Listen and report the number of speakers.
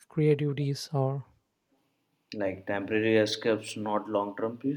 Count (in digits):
2